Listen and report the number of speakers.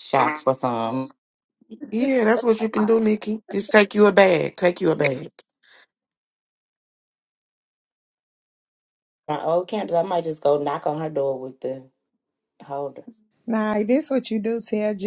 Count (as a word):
three